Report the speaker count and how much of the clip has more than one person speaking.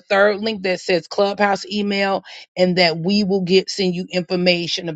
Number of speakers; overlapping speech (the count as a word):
one, no overlap